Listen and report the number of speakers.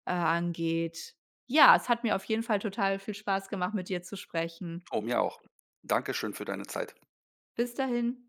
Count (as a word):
two